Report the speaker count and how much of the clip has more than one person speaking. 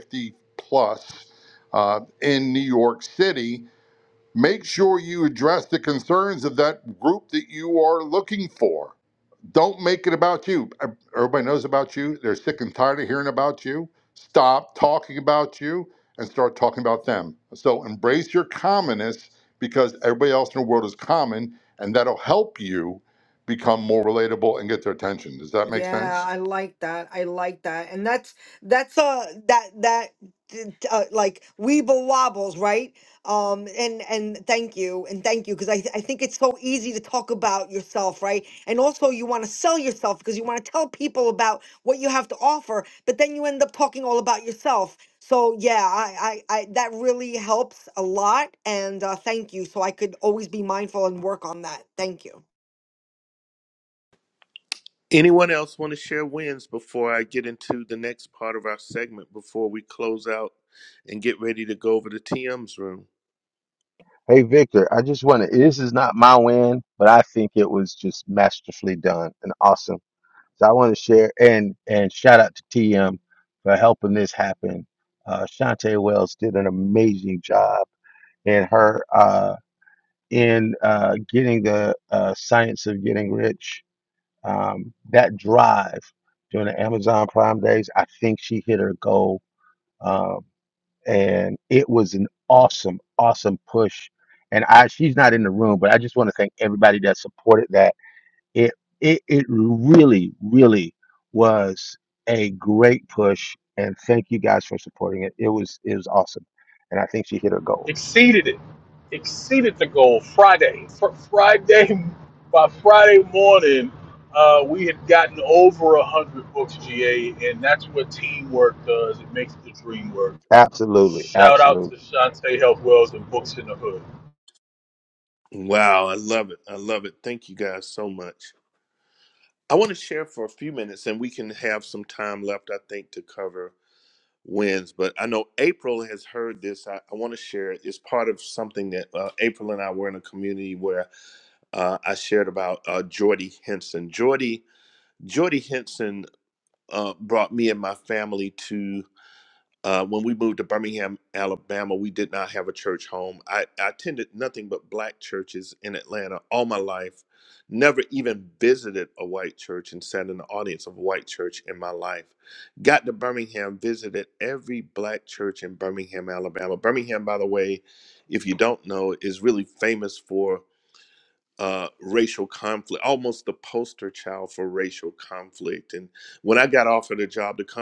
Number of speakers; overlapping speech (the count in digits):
5, about 1%